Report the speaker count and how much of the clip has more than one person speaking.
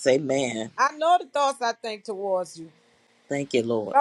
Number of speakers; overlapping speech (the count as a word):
two, no overlap